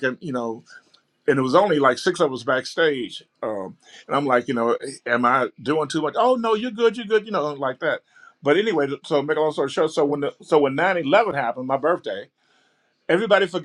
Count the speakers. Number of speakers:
1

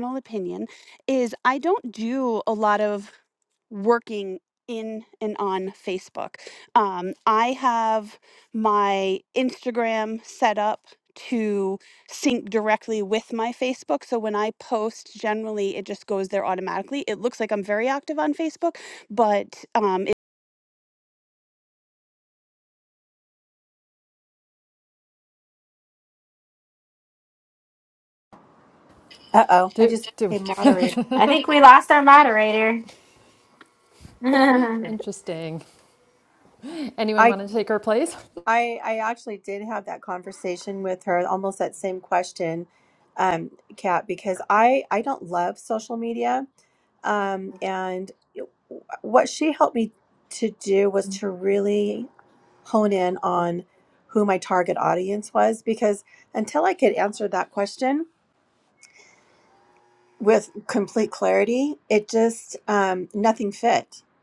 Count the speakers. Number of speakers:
4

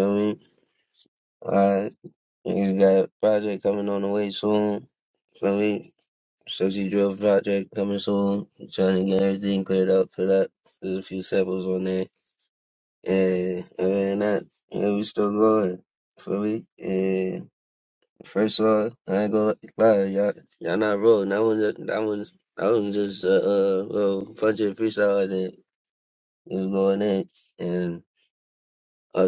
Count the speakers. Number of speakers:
1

